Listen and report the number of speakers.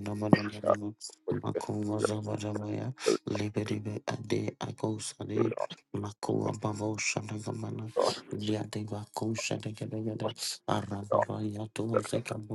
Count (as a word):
two